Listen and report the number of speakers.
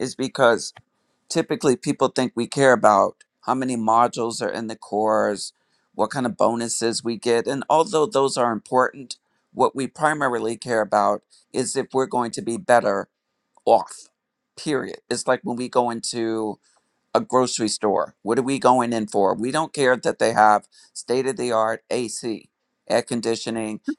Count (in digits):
1